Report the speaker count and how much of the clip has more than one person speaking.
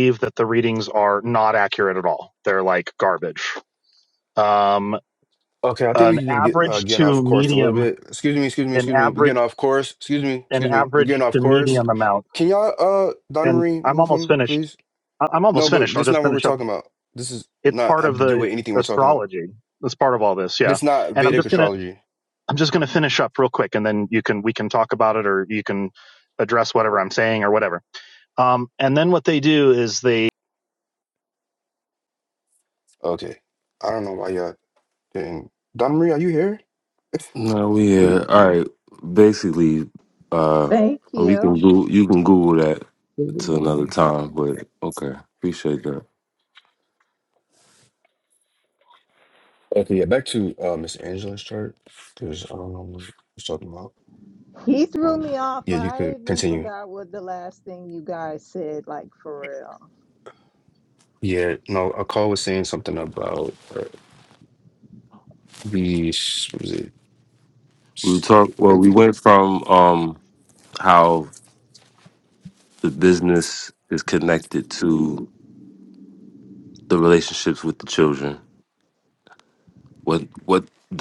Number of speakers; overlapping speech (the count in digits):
4, about 14%